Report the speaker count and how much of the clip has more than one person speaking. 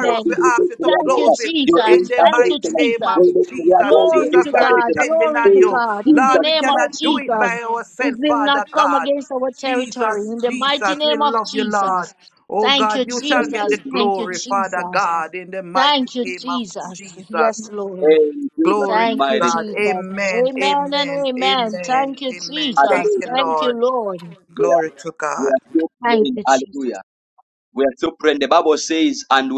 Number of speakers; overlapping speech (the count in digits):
3, about 71%